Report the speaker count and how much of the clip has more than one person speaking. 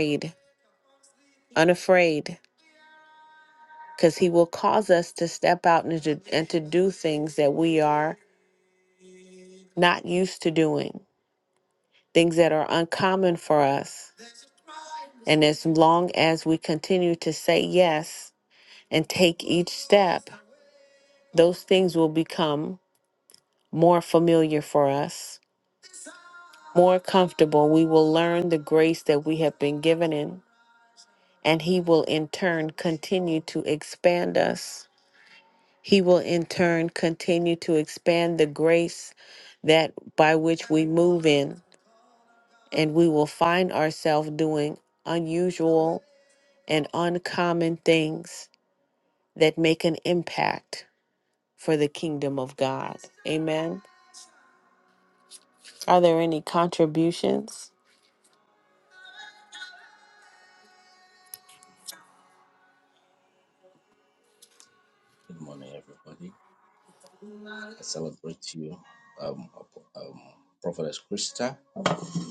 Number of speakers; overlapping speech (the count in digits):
2, no overlap